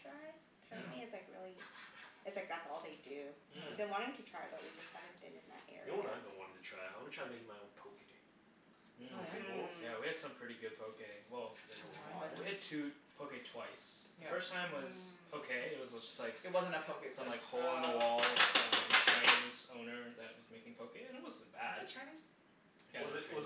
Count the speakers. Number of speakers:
4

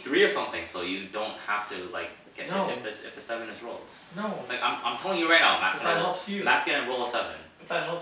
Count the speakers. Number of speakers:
2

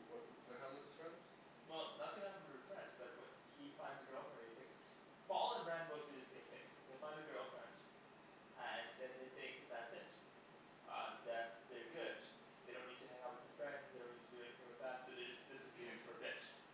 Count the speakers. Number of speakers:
2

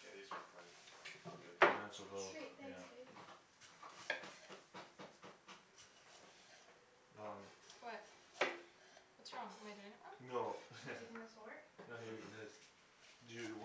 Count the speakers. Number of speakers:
4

